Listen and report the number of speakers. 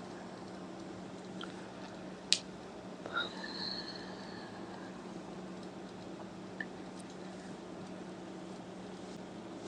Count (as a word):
zero